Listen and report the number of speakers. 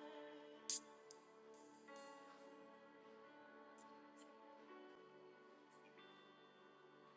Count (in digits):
0